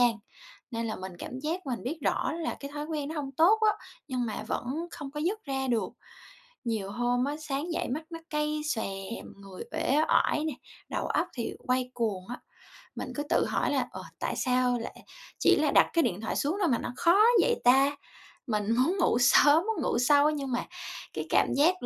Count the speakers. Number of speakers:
1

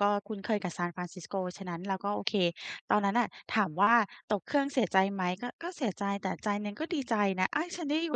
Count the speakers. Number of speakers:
1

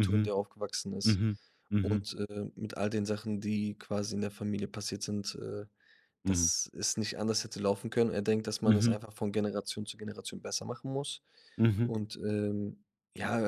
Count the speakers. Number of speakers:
2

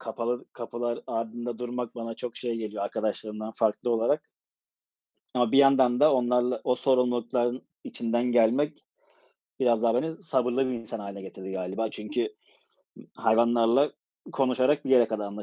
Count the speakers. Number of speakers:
1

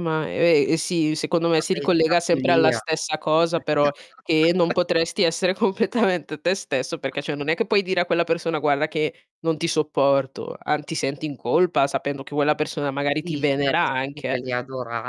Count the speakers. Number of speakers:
2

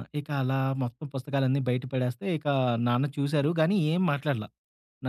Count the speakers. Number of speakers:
1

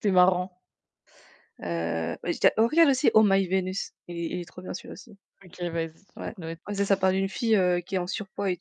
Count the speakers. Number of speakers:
2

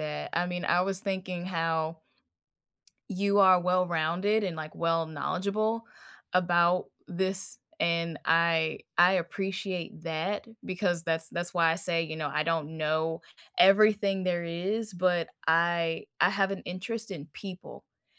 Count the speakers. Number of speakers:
1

